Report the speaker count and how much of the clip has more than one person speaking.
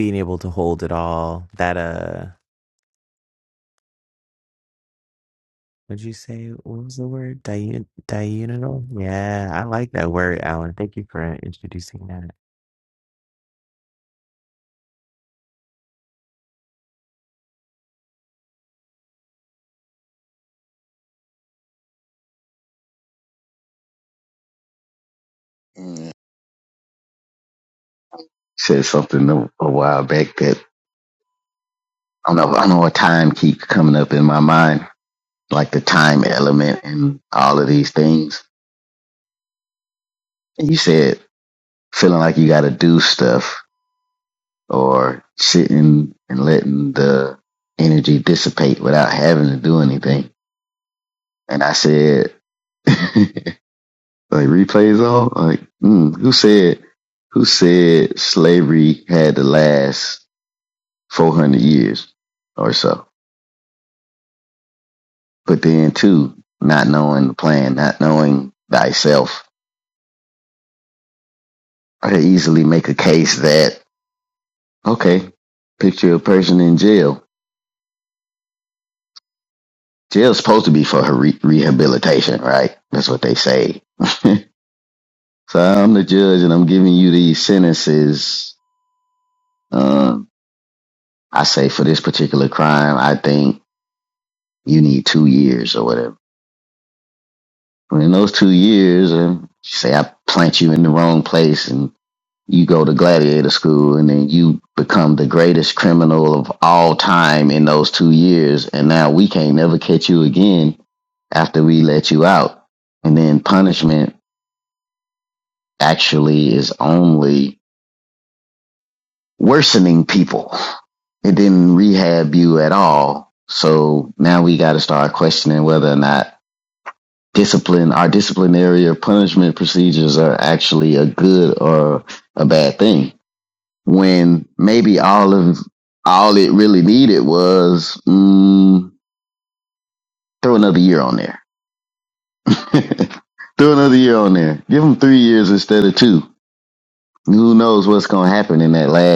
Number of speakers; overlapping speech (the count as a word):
two, no overlap